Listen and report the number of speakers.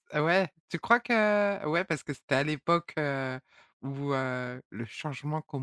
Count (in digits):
1